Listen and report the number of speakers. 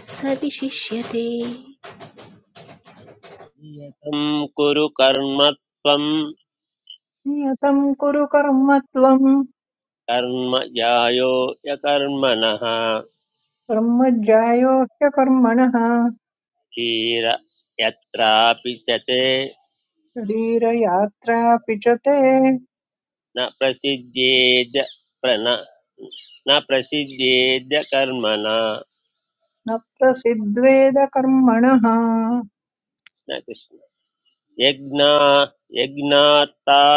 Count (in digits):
3